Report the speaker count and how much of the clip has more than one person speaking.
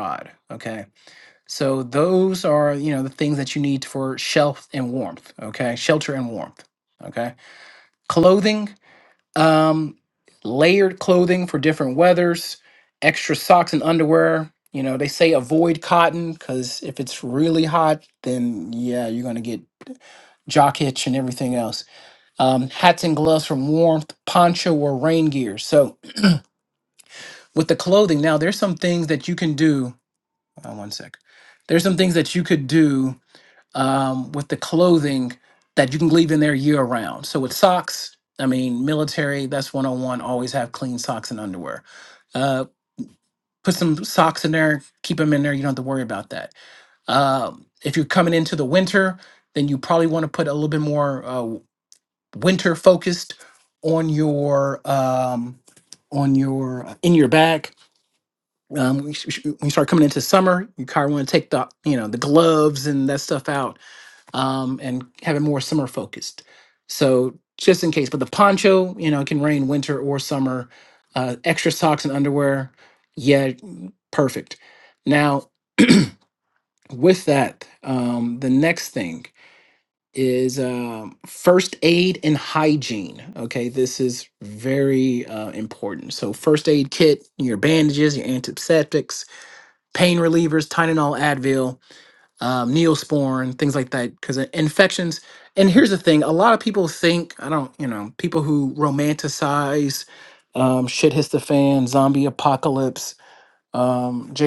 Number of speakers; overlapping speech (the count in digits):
1, no overlap